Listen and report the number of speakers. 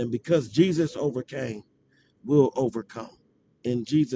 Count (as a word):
one